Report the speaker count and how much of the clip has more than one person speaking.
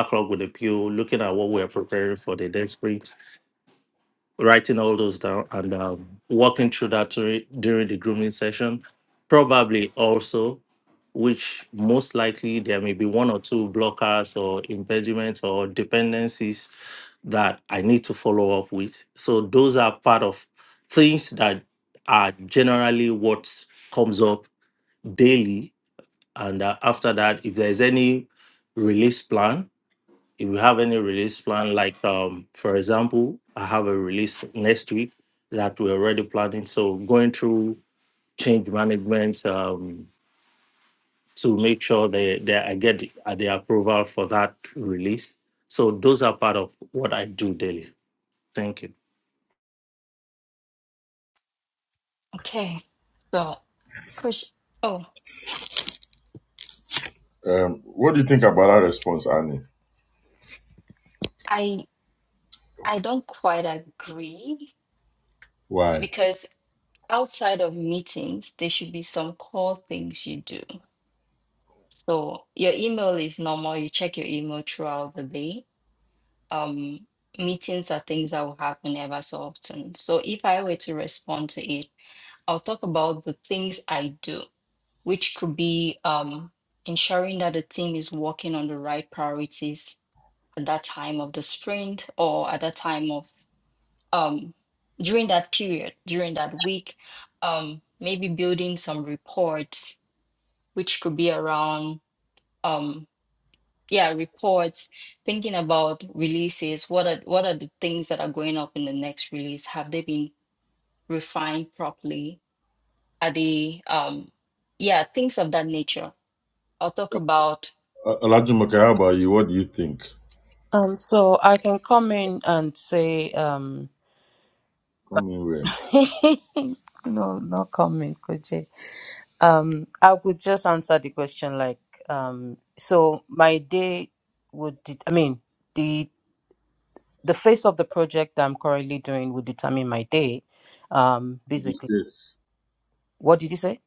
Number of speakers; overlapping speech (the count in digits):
4, under 1%